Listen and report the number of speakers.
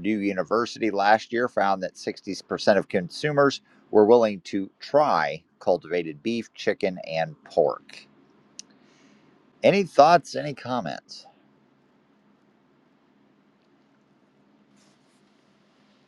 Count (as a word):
one